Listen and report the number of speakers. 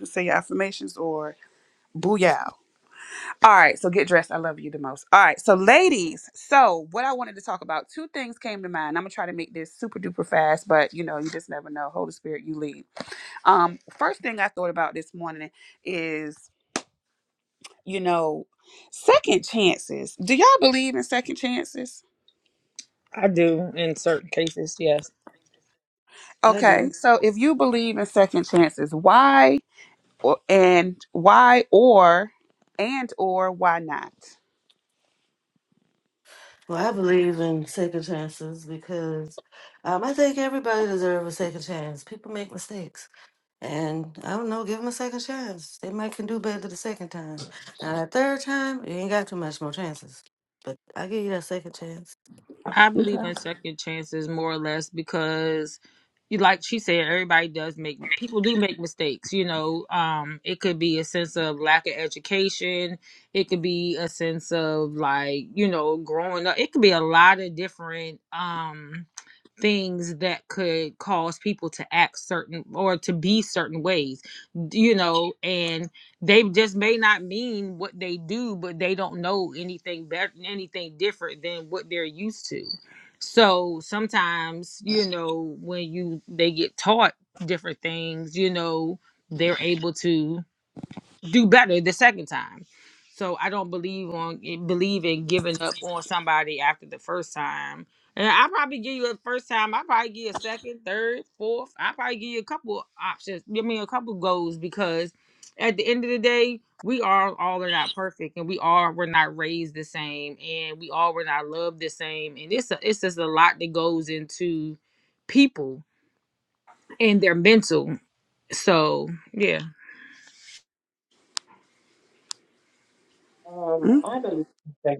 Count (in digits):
4